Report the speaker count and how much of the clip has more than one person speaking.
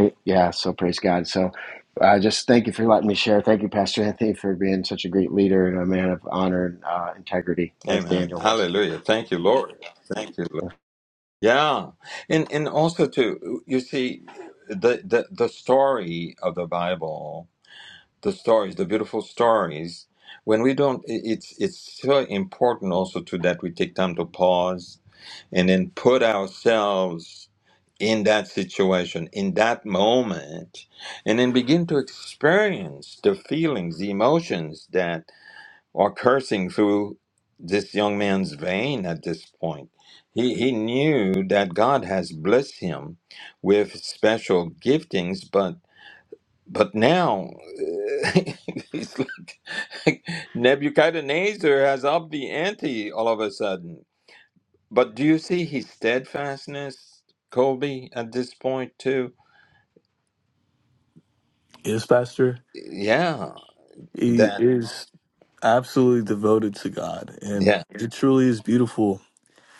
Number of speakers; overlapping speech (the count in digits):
3, about 2%